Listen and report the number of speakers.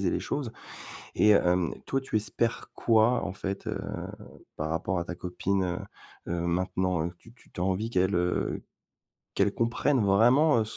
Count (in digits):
1